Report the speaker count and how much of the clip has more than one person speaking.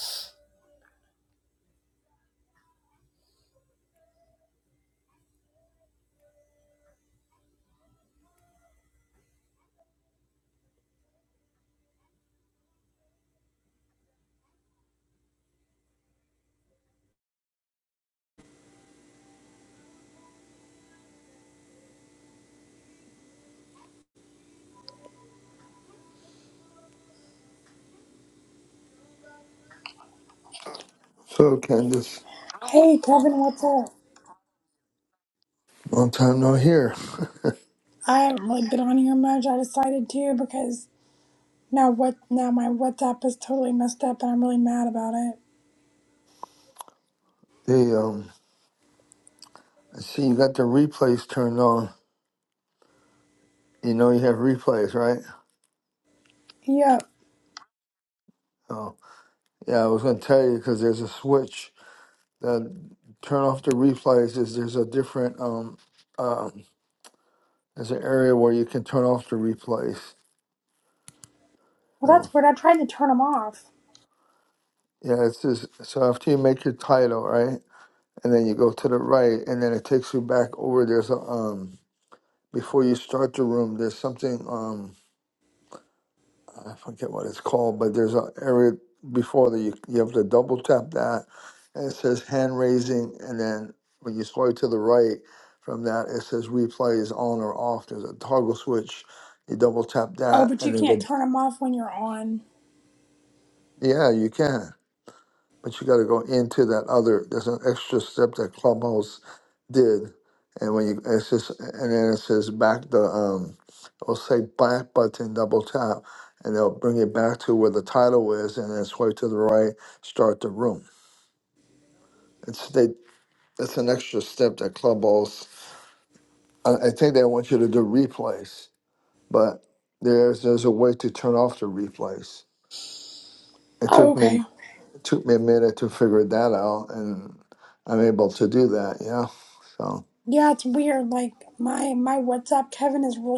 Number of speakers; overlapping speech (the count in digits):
2, about 1%